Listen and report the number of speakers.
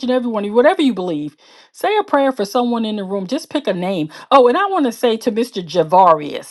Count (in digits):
1